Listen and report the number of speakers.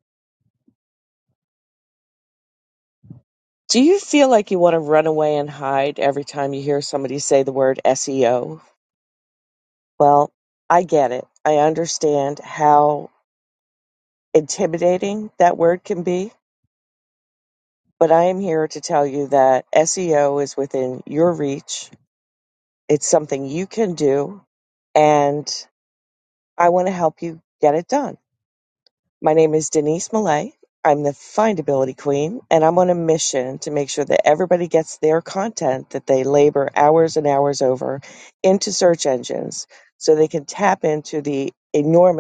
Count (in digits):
1